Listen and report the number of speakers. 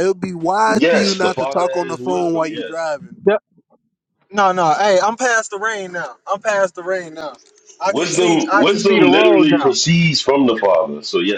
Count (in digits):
3